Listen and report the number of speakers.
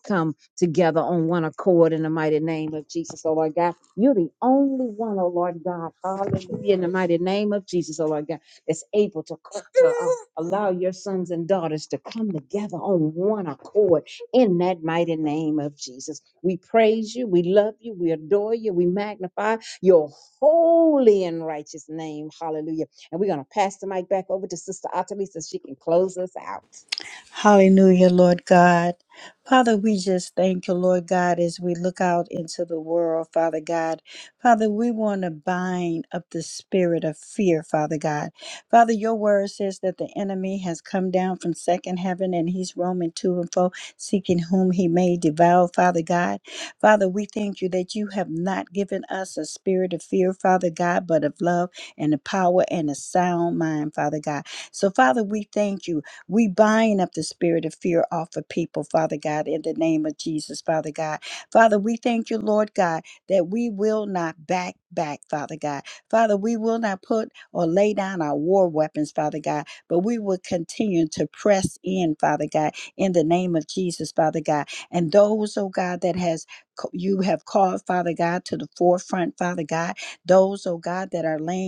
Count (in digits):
2